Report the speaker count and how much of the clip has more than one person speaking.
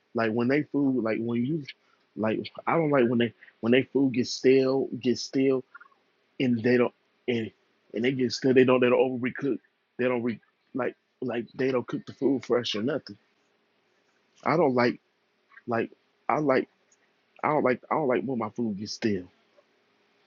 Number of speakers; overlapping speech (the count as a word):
one, no overlap